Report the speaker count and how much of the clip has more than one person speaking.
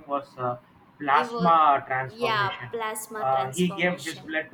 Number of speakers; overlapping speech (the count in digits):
2, about 48%